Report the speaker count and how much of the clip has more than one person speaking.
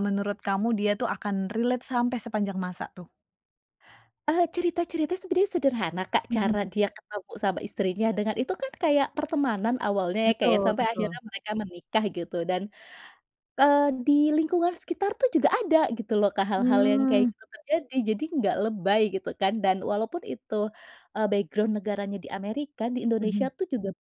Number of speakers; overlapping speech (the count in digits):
2, about 9%